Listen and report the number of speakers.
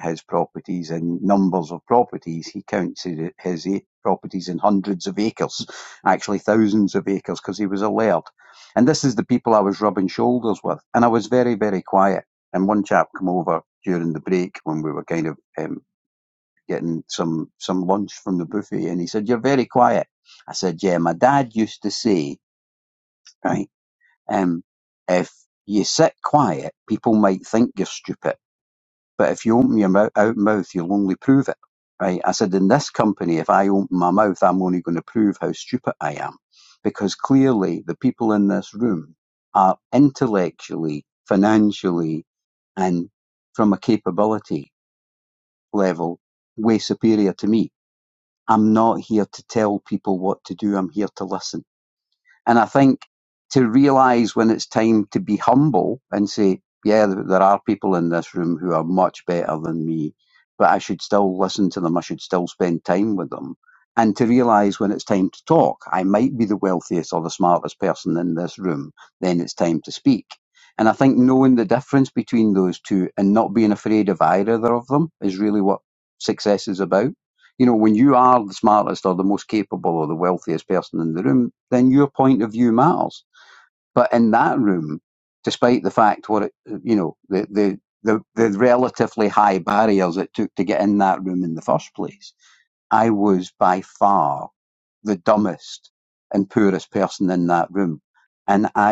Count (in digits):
1